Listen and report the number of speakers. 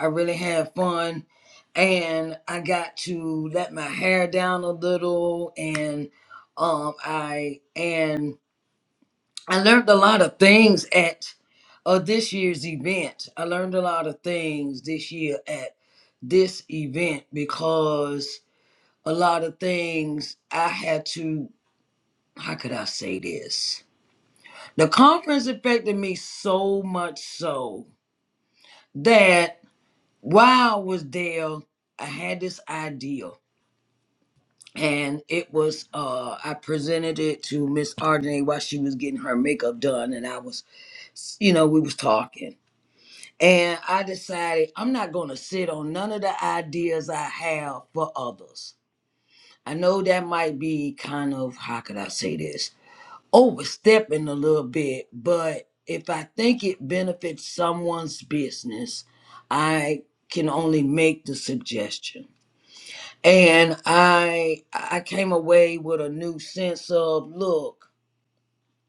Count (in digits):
1